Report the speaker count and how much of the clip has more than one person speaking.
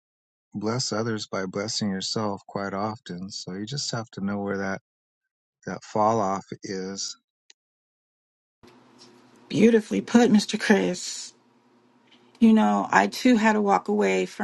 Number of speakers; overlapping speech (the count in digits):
2, no overlap